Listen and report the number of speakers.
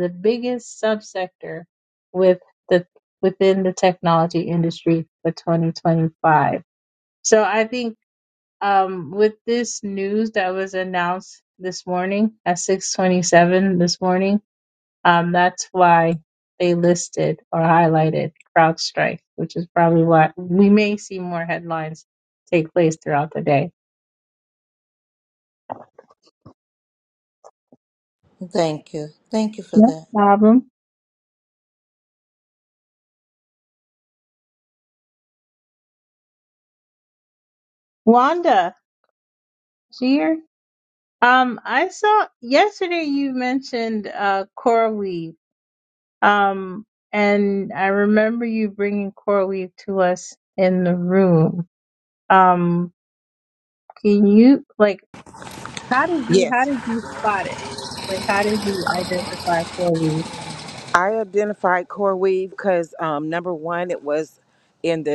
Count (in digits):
3